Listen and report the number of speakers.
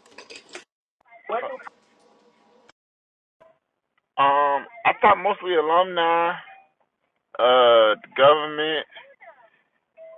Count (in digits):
1